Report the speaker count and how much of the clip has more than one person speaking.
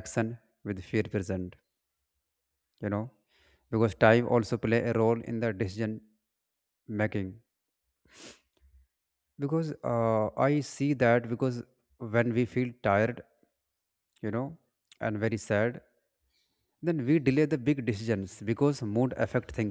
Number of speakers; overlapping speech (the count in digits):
1, no overlap